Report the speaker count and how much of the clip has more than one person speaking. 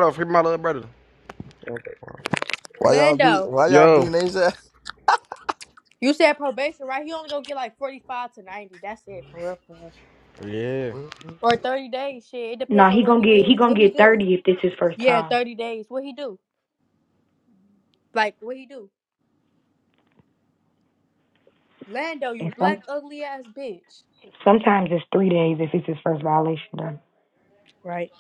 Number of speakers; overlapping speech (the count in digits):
4, about 11%